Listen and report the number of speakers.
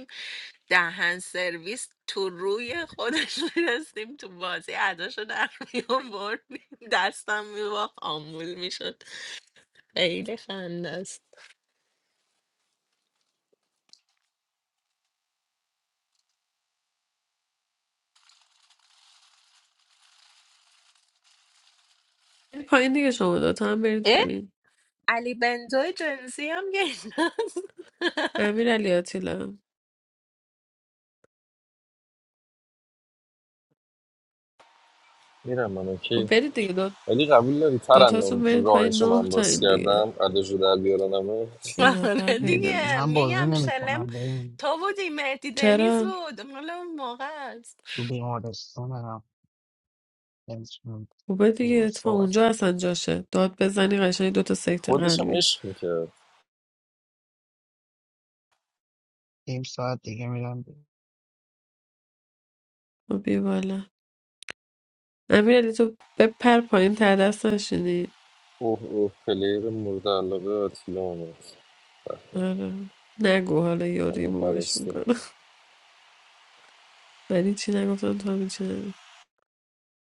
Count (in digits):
4